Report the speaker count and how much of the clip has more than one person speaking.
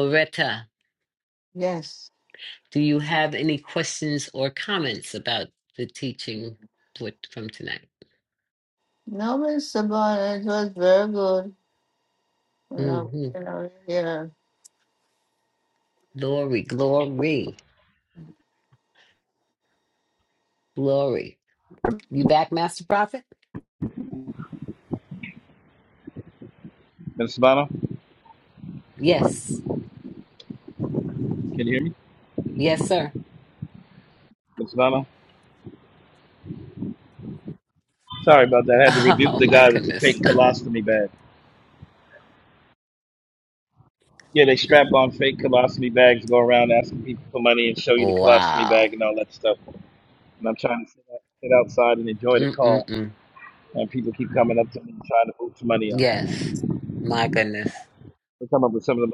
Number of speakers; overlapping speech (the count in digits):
3, about 6%